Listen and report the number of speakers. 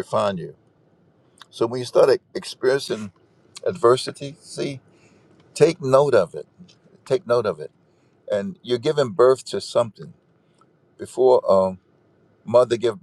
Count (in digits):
1